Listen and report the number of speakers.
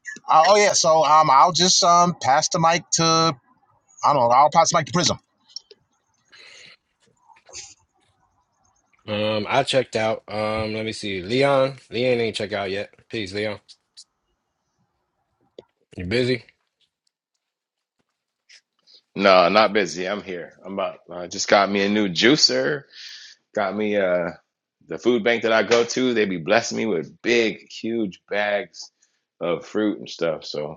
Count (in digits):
3